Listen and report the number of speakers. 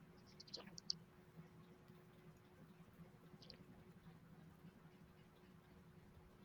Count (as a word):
zero